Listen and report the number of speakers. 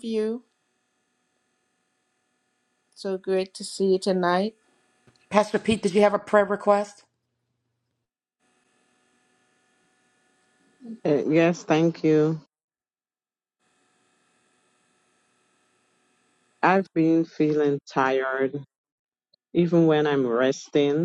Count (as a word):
three